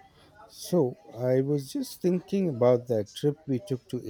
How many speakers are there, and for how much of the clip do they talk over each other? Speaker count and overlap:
1, no overlap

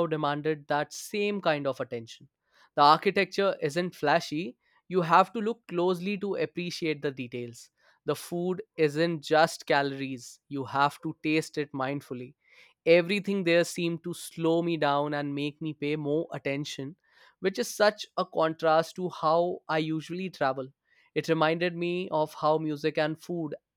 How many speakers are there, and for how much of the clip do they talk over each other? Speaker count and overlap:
1, no overlap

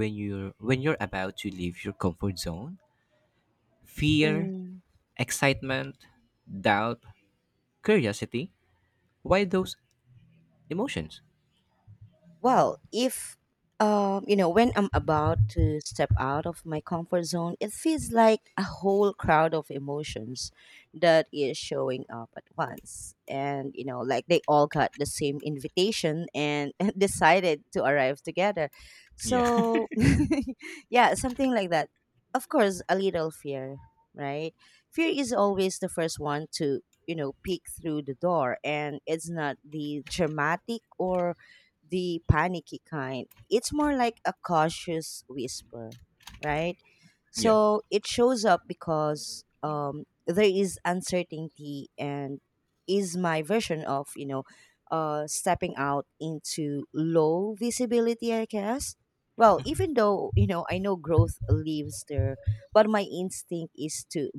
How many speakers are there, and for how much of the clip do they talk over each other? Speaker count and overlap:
2, about 1%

